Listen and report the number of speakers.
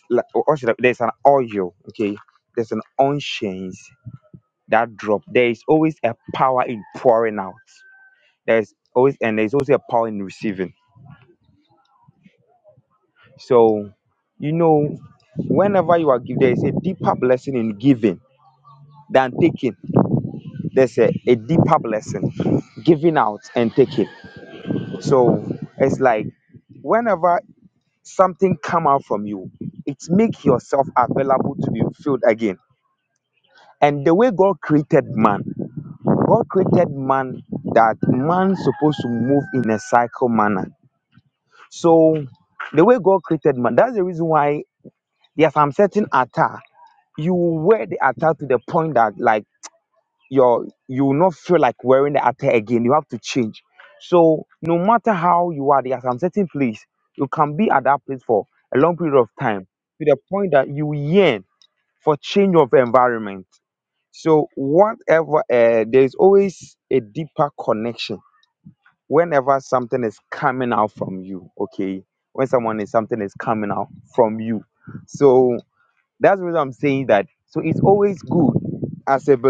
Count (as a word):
one